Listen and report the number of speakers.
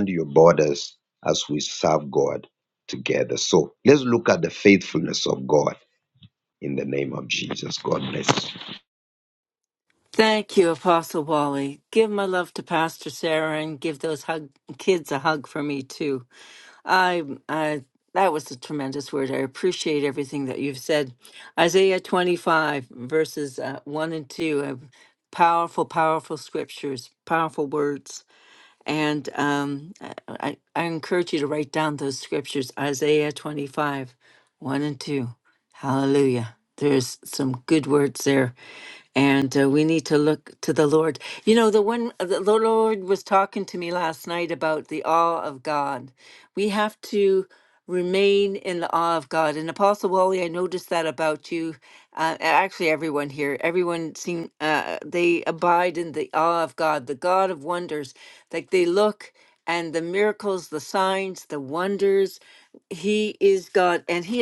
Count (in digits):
2